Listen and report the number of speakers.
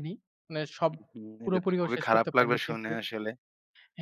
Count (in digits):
2